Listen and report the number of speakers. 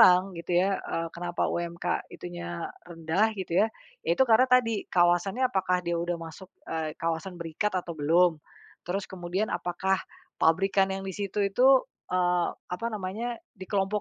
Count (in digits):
1